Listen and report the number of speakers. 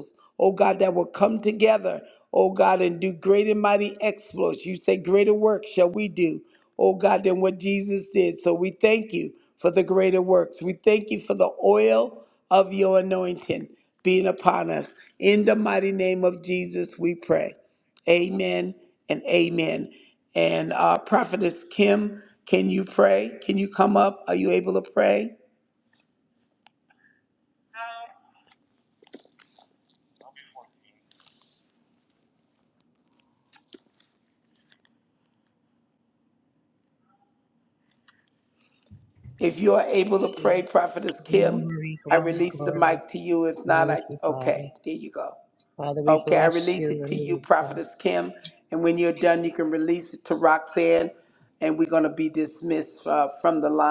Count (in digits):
2